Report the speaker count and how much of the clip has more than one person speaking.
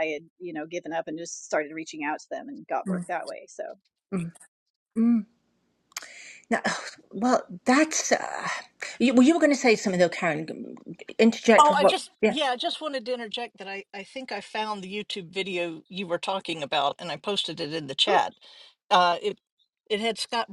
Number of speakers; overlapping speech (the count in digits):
3, about 5%